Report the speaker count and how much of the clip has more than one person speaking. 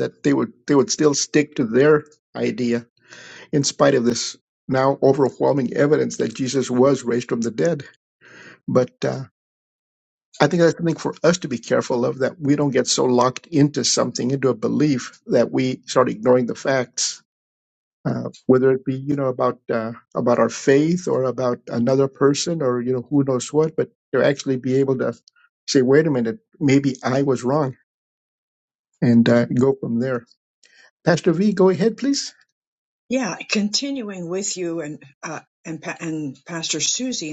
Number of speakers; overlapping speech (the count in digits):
2, no overlap